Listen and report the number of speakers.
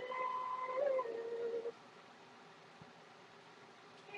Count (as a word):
zero